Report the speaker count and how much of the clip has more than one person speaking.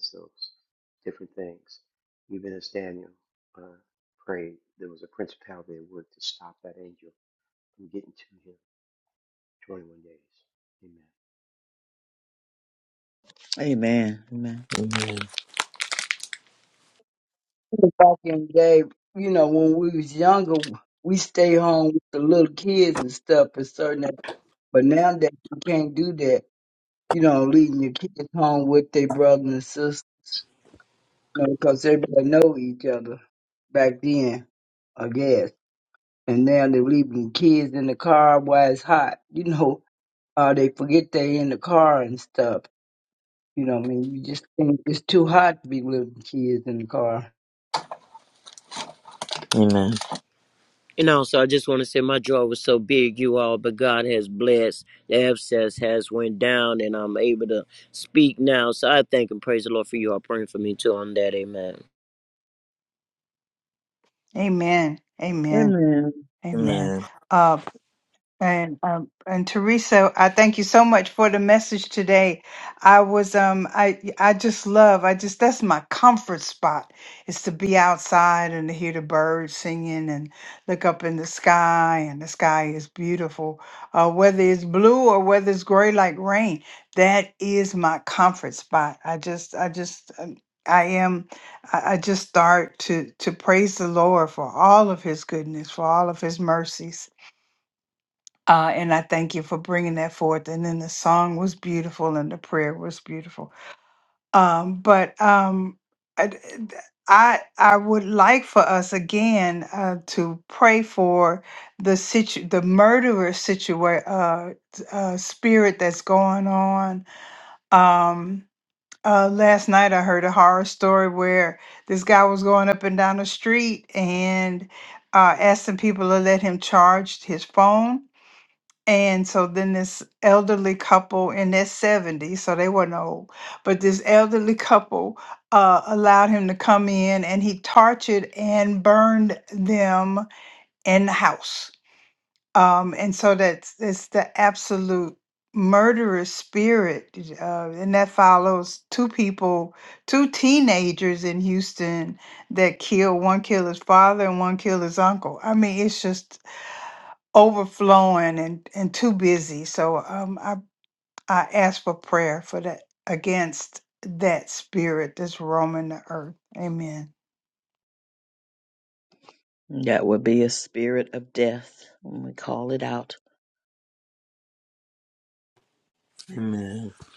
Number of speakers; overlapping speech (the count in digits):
6, under 1%